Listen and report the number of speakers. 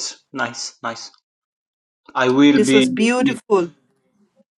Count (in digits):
2